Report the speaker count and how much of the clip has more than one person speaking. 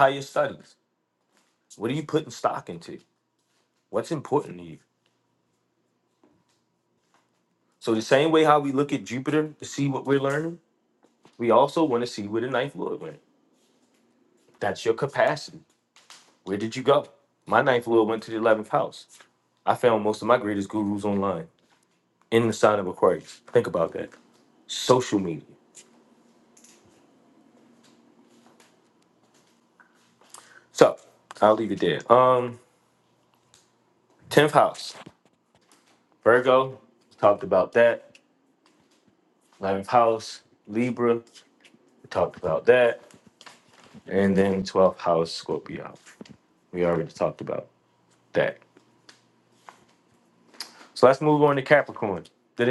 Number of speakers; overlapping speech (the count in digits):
1, no overlap